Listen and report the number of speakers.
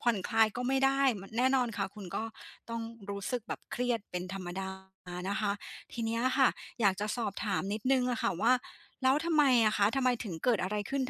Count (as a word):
one